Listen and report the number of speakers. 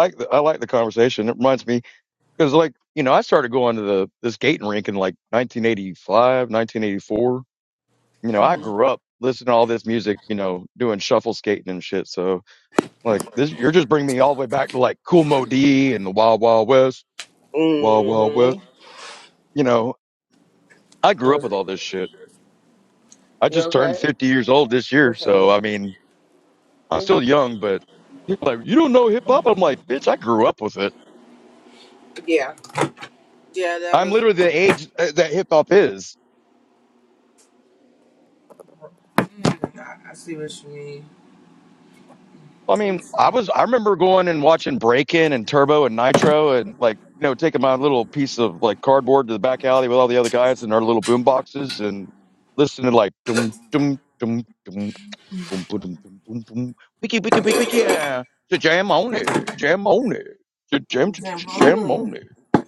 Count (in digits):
2